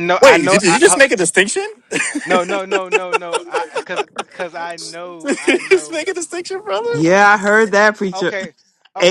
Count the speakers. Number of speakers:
3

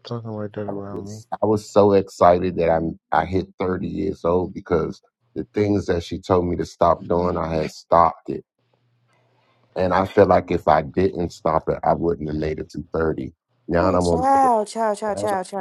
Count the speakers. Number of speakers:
3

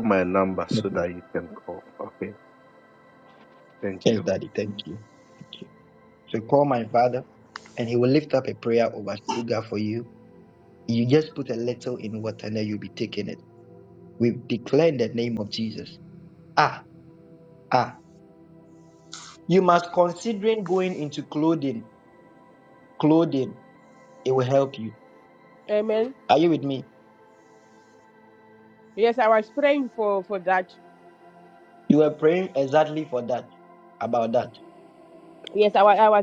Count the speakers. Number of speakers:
3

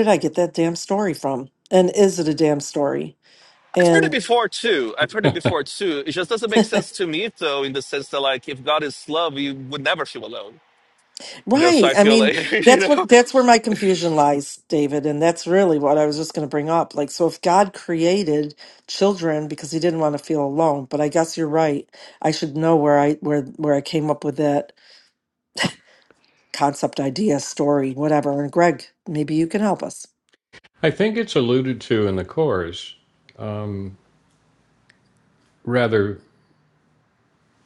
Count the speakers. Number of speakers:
3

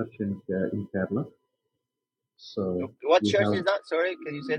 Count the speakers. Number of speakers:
2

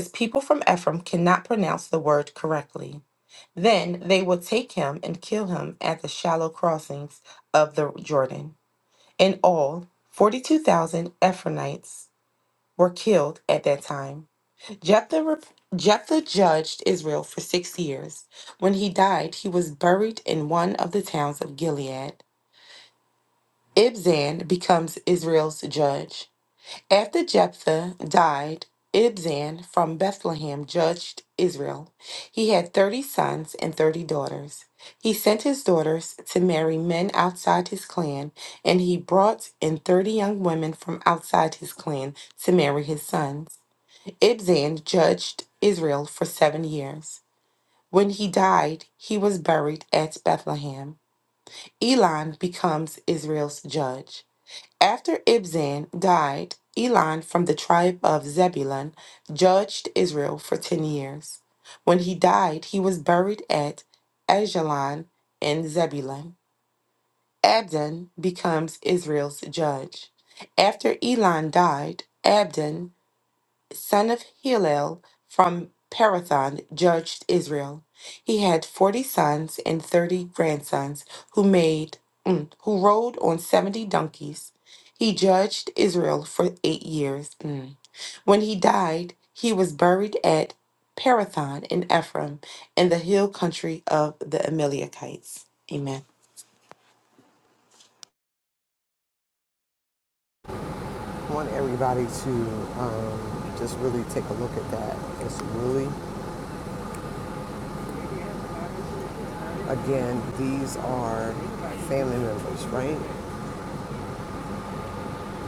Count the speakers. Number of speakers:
2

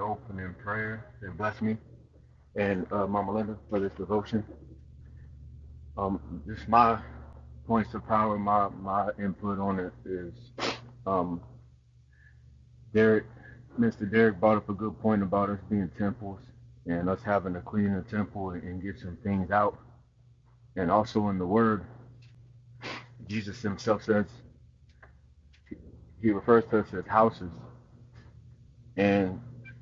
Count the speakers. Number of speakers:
1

